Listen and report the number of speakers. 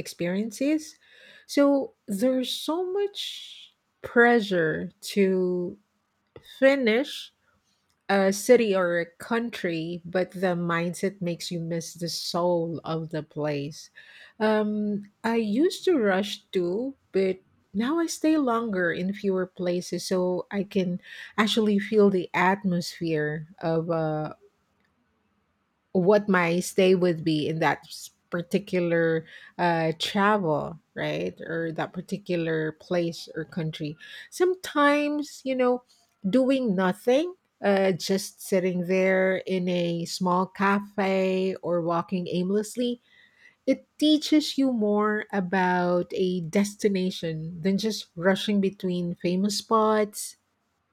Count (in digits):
1